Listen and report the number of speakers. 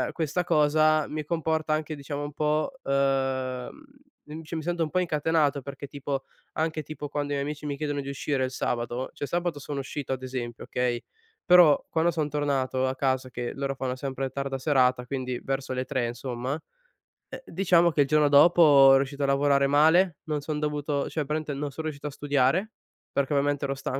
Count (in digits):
1